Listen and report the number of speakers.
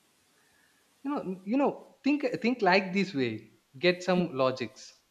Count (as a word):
one